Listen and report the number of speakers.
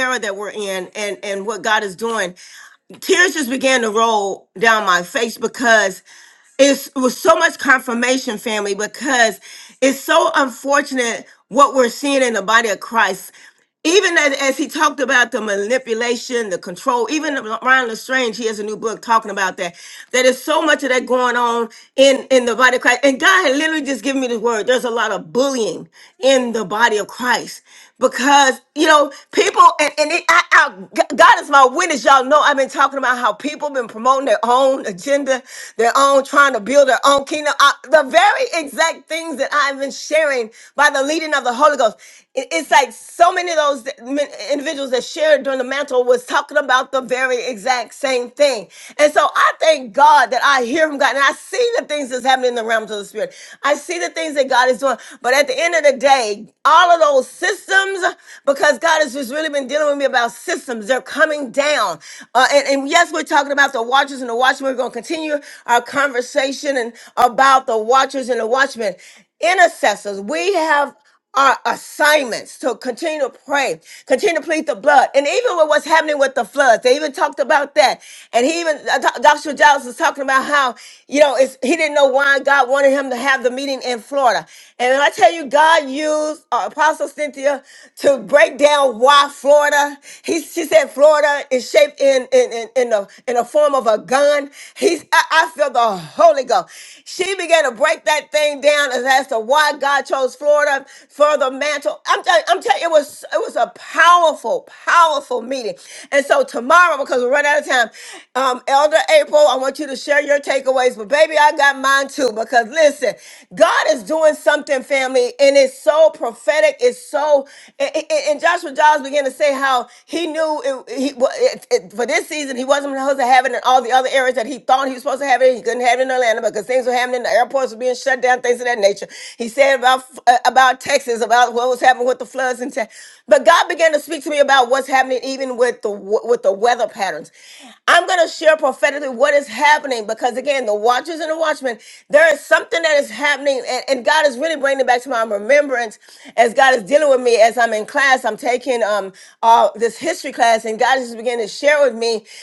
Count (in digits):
1